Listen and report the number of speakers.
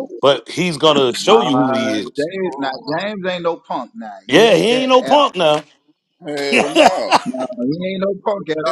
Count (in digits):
3